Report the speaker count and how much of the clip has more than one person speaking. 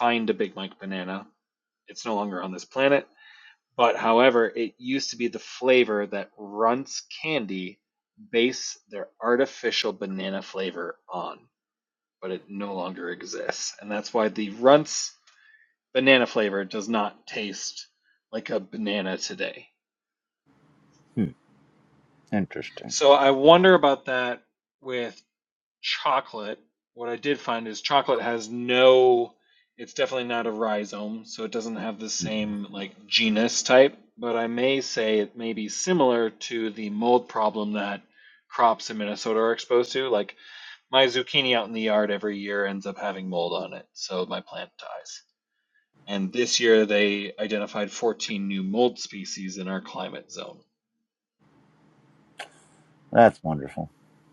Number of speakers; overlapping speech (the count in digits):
2, under 1%